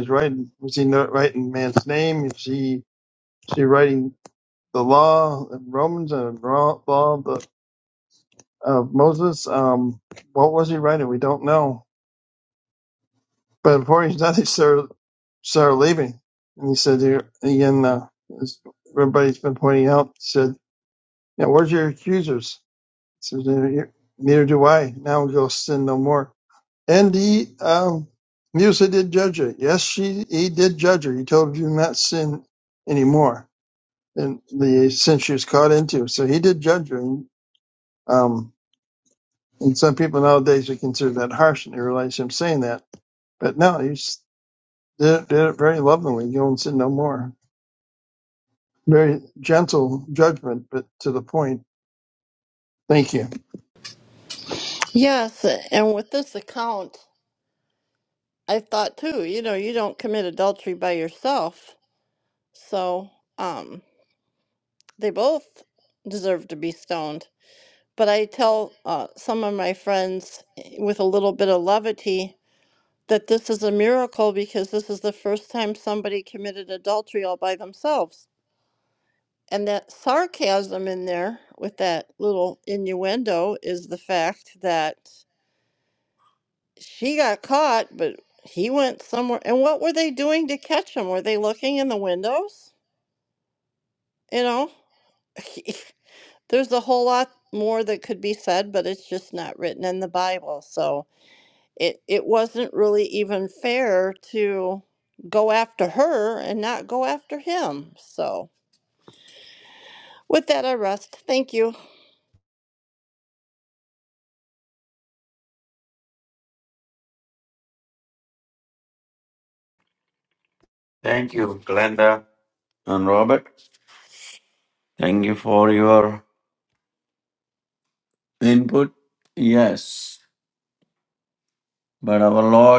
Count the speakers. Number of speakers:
three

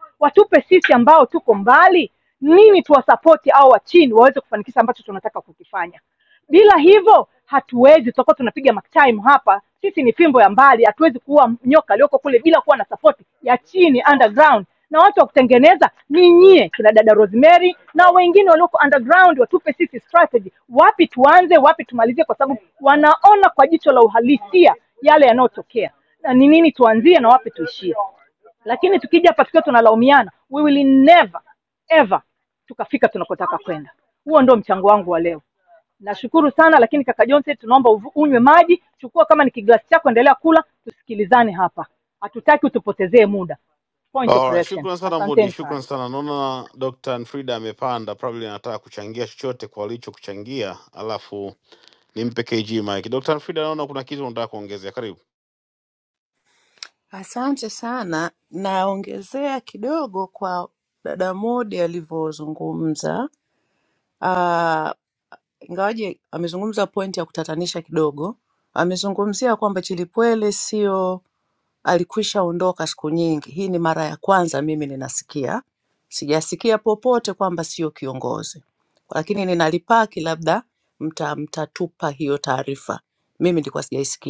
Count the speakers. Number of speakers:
three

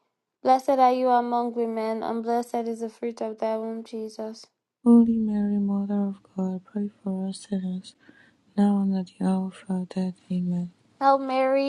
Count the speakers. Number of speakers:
two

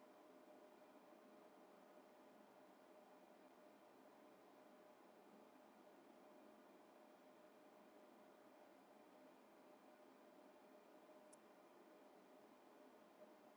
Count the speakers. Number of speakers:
zero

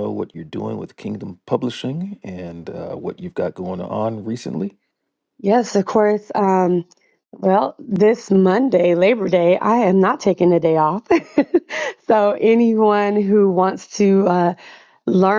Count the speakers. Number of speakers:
two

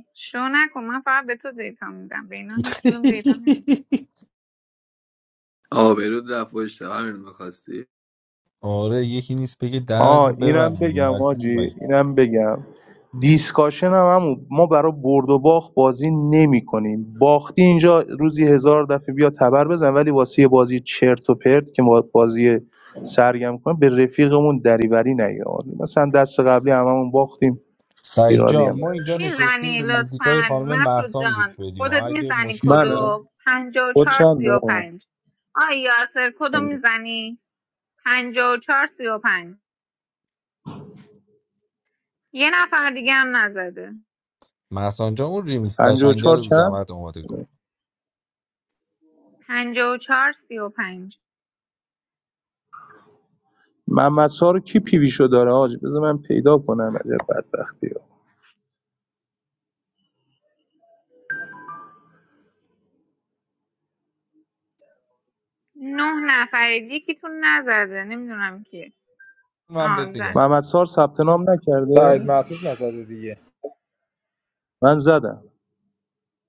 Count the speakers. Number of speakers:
five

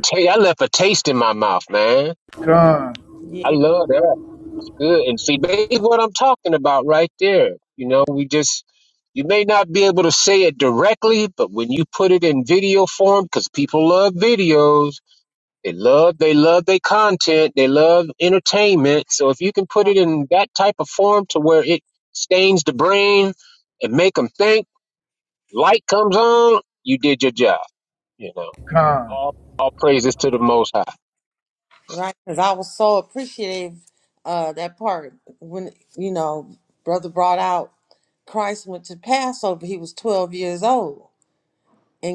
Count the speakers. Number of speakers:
three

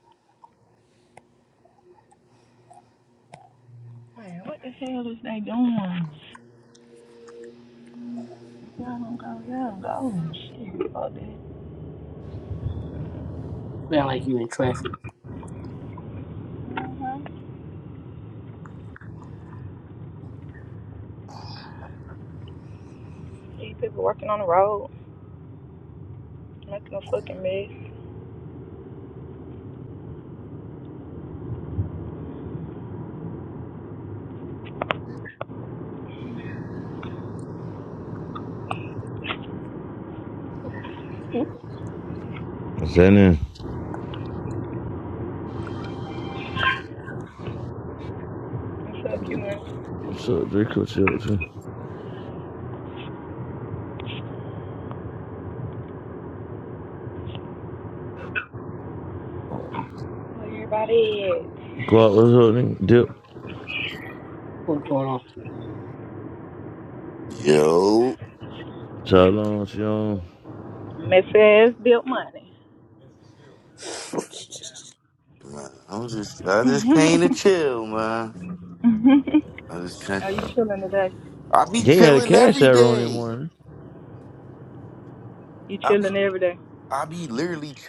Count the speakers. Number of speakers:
four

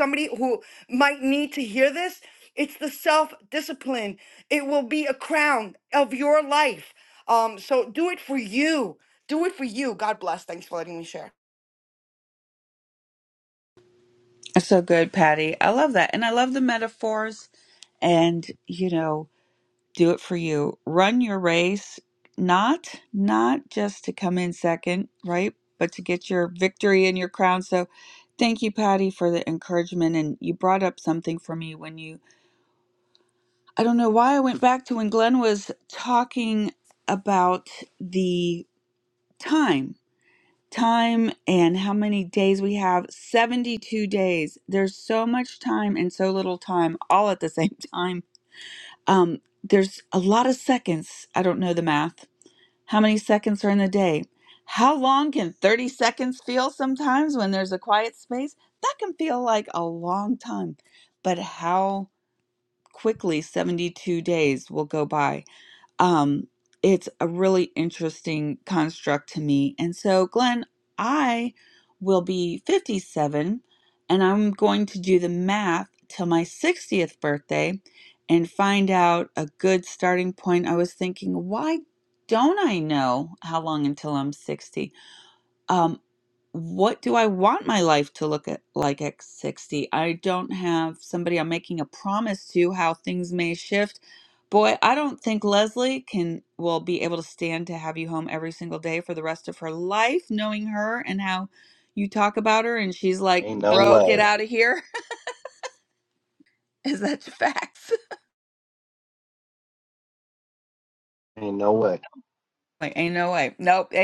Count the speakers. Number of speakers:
three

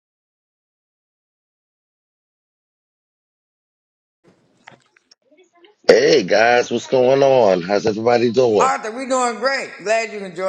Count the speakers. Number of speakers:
two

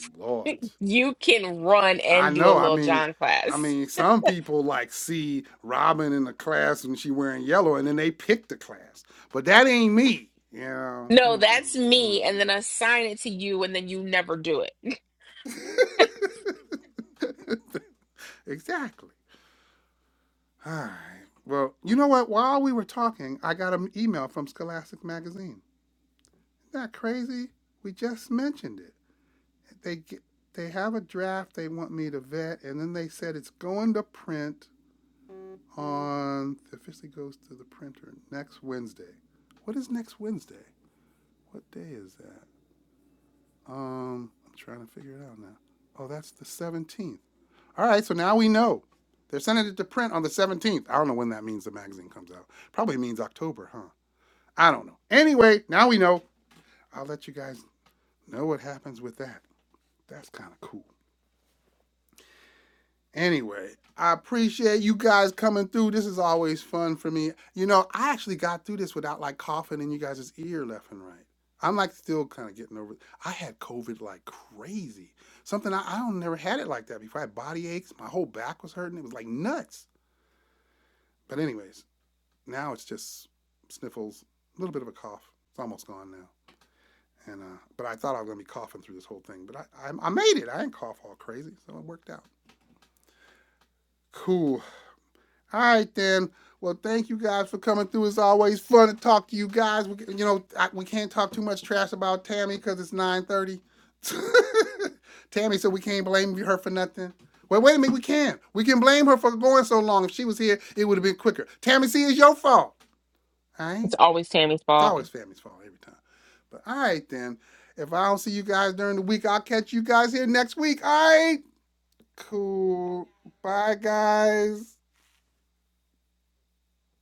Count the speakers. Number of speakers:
two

